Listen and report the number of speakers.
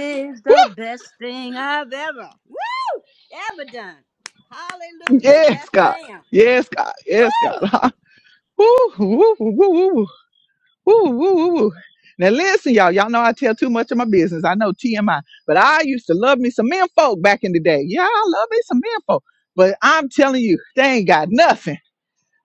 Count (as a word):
two